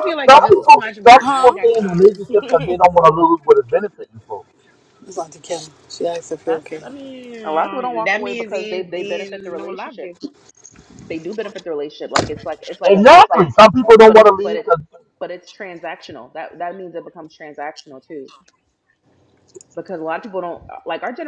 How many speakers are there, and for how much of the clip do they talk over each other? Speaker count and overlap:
4, about 30%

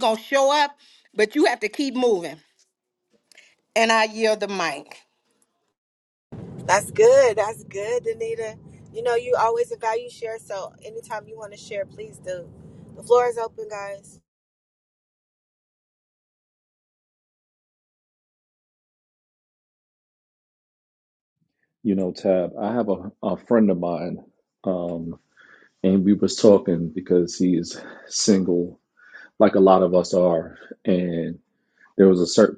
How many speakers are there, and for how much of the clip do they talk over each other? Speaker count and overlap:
3, no overlap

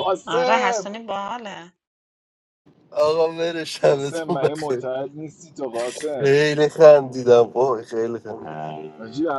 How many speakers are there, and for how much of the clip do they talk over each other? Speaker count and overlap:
3, about 15%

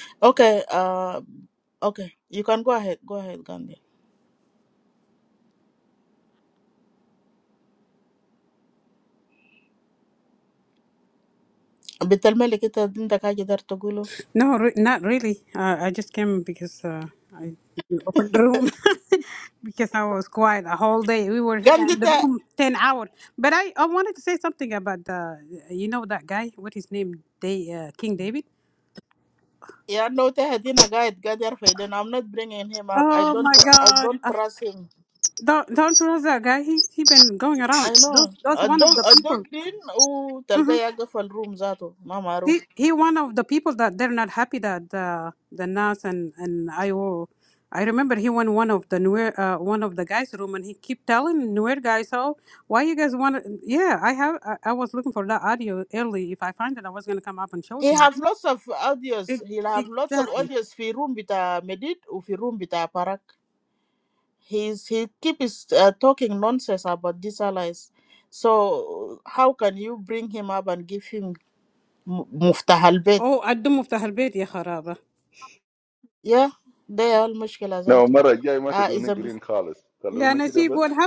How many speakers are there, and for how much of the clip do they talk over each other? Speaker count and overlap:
3, about 8%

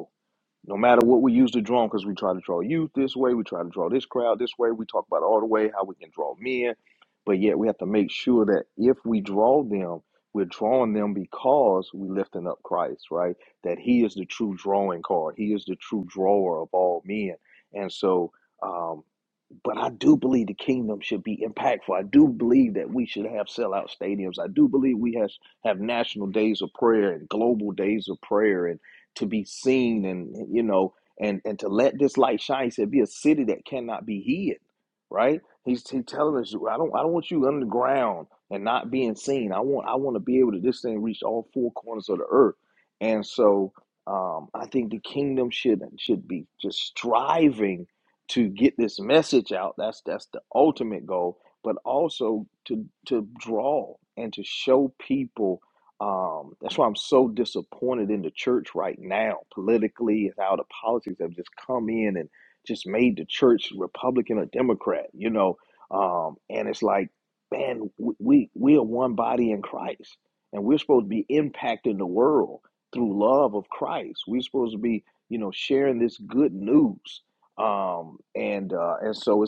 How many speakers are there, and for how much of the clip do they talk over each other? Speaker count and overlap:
1, no overlap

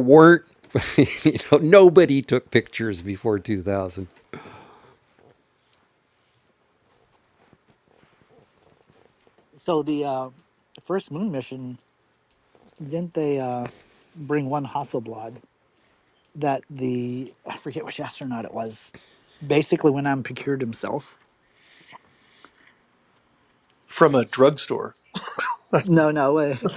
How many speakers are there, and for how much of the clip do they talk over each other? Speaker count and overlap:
3, no overlap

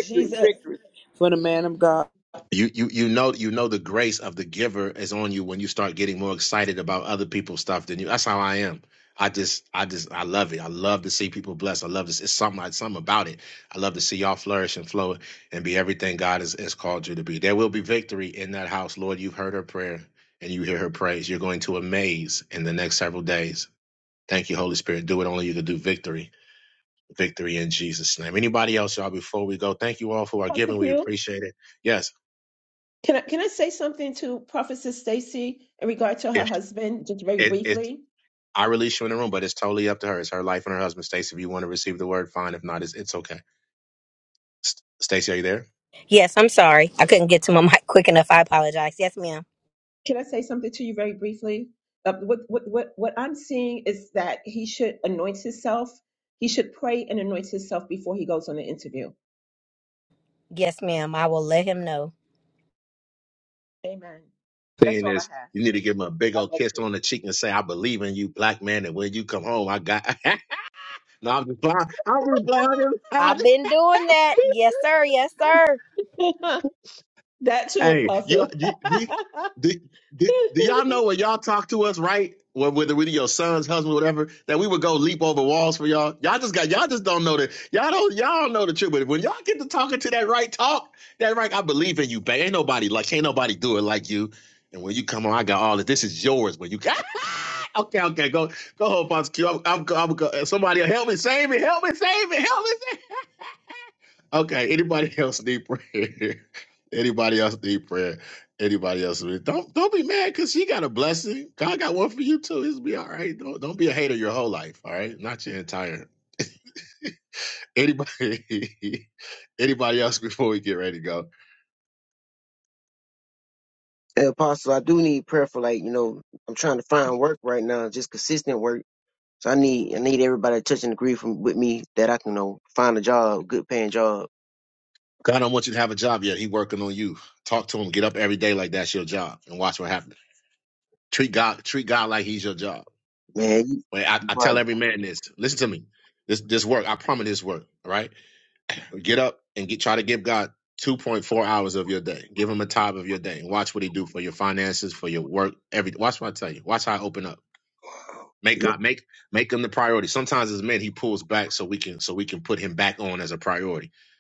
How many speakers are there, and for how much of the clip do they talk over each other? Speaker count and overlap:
5, about 3%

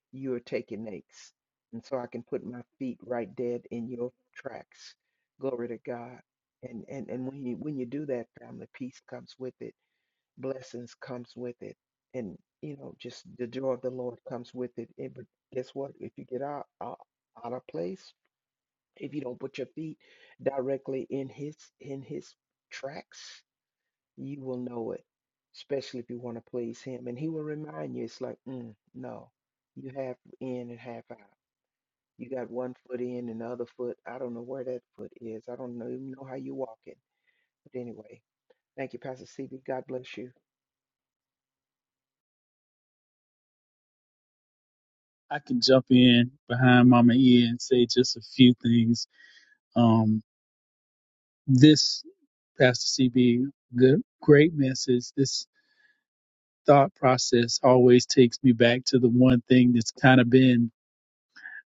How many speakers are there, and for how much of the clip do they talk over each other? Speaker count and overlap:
2, no overlap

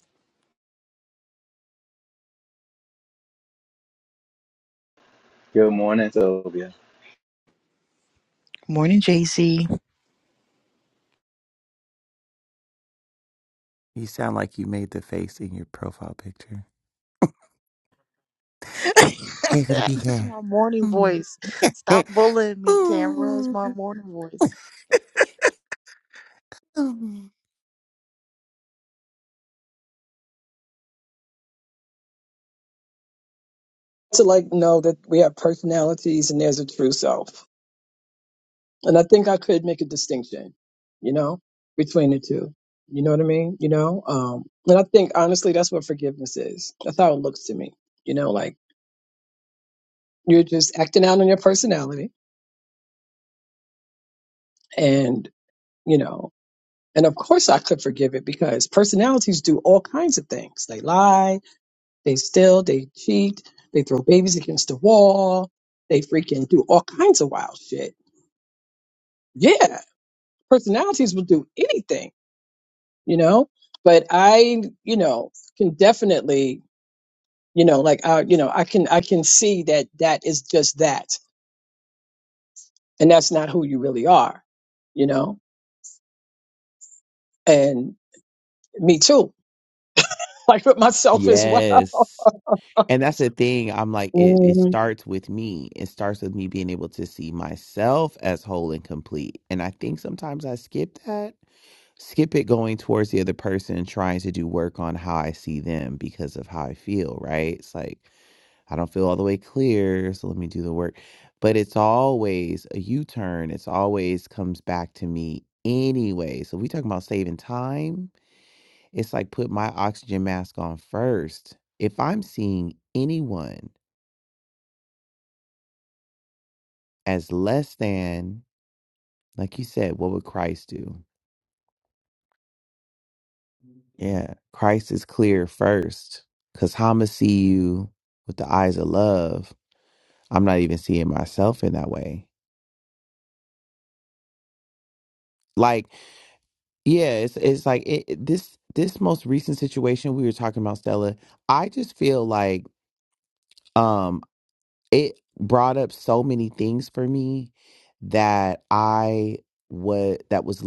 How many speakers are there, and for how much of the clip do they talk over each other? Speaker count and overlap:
4, about 1%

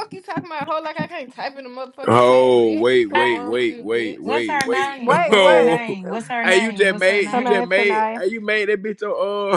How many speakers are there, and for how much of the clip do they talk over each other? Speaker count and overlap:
3, about 58%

